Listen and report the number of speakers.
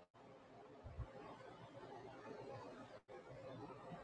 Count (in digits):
0